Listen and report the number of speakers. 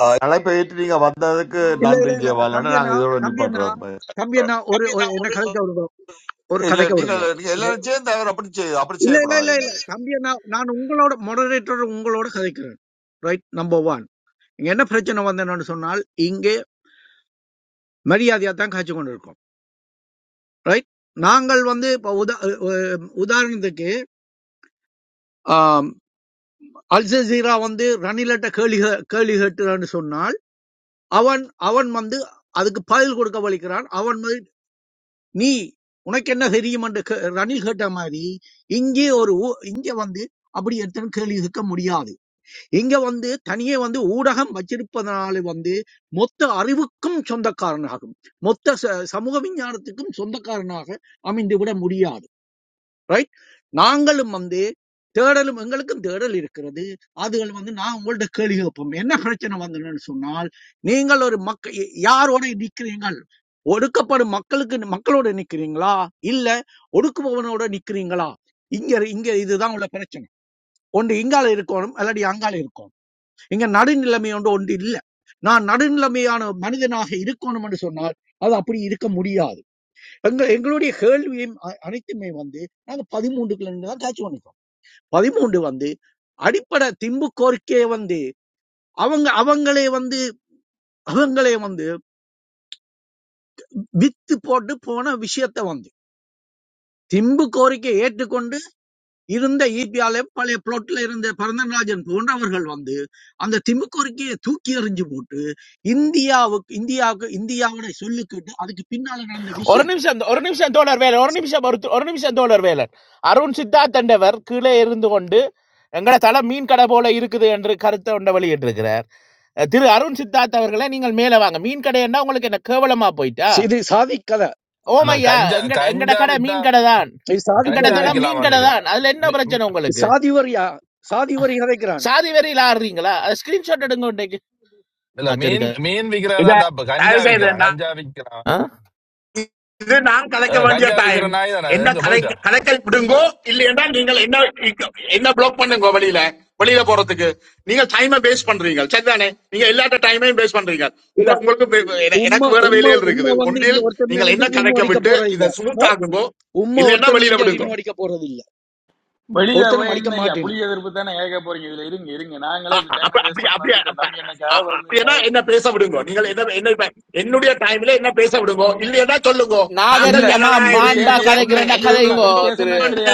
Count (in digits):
6